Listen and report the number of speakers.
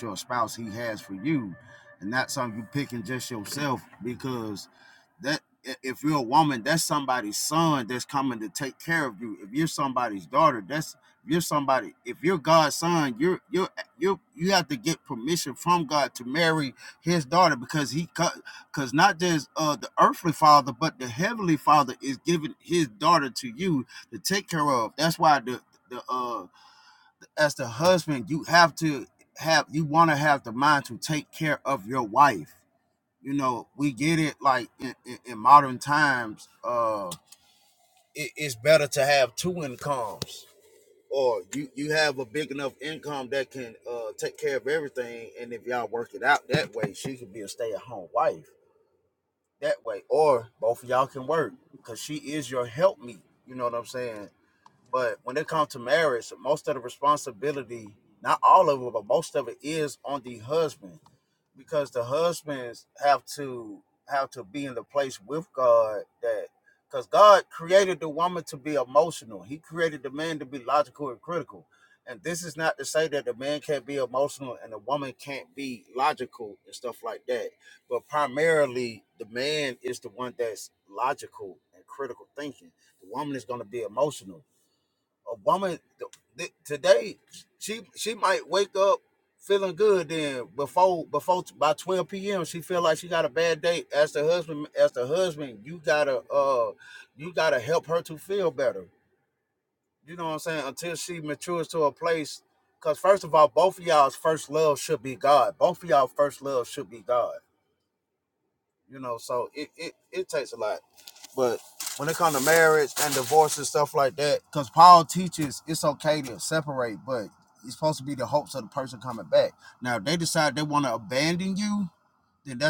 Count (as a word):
one